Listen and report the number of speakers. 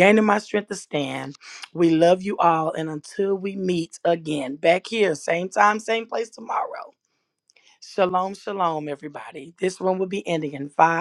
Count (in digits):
1